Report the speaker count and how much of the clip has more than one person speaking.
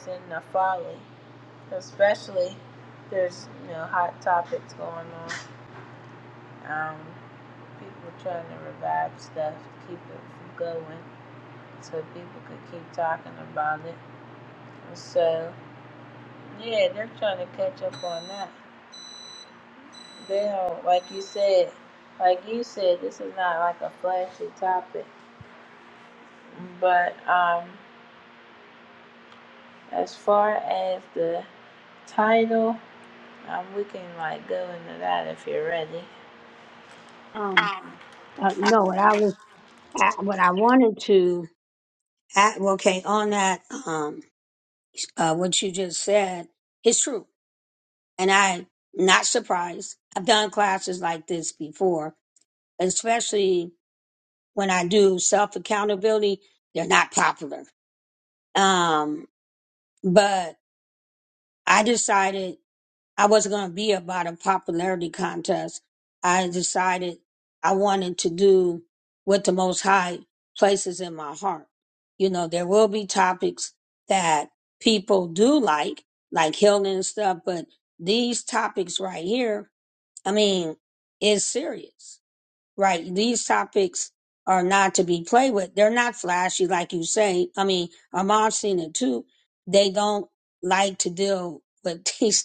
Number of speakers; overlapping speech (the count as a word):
two, no overlap